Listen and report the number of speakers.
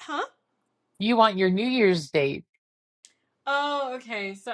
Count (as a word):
two